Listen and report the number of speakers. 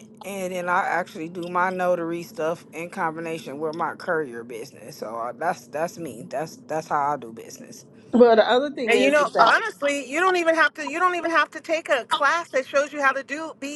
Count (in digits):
3